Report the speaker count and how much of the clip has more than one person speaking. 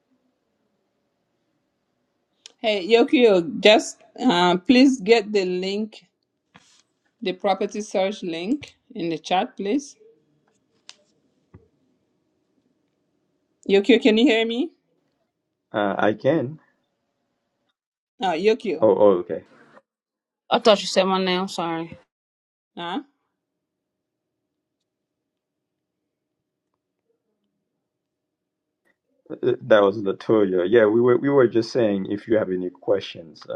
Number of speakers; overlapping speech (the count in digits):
3, under 1%